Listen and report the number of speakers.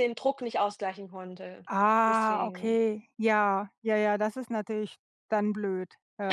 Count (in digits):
2